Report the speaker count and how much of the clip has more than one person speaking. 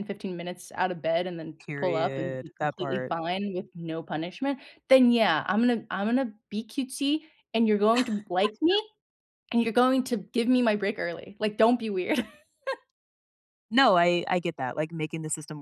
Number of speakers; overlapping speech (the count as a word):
two, about 9%